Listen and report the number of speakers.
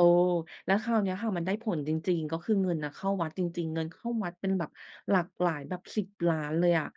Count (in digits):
1